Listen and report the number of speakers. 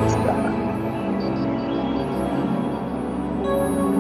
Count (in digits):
0